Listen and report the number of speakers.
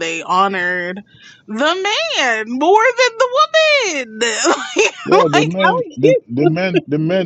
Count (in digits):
2